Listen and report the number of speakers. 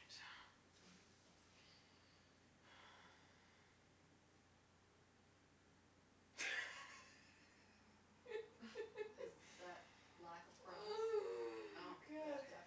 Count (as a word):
two